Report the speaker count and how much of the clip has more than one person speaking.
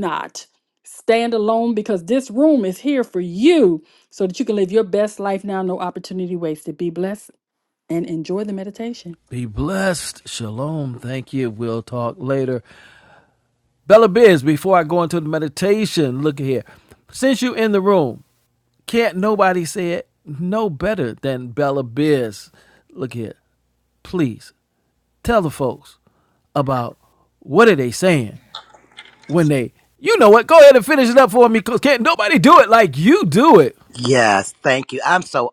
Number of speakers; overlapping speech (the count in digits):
3, no overlap